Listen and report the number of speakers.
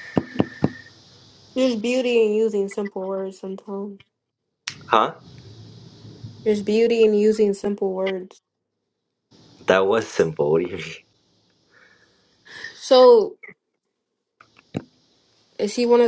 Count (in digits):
2